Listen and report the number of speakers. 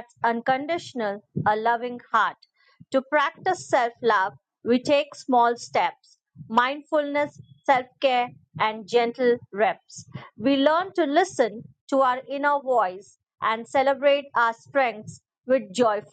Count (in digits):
1